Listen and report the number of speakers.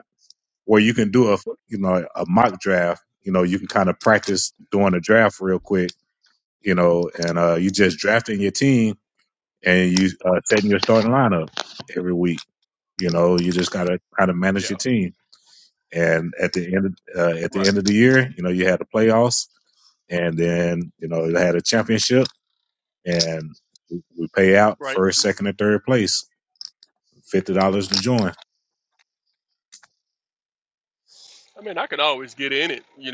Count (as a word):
two